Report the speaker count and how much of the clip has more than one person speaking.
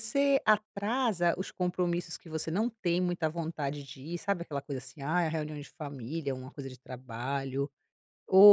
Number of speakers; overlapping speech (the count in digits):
1, no overlap